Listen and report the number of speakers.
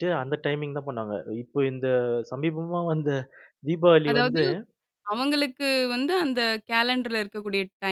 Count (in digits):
2